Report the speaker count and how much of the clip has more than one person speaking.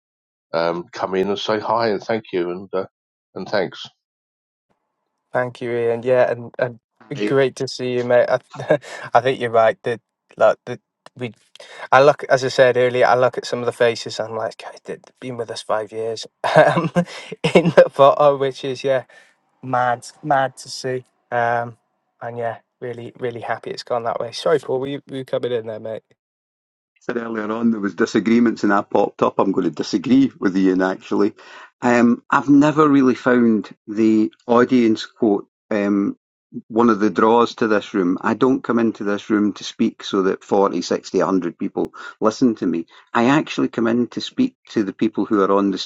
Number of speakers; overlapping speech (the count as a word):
three, no overlap